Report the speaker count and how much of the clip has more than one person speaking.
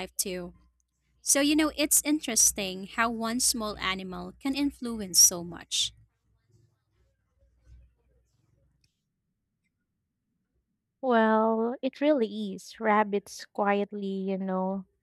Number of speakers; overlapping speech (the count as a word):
two, no overlap